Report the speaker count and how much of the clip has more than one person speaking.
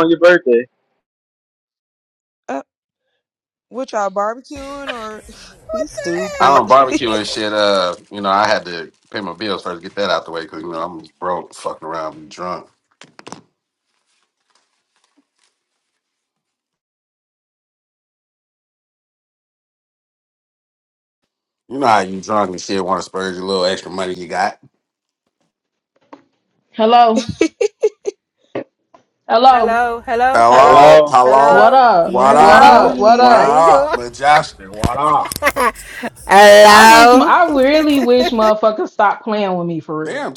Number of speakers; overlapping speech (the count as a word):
five, about 11%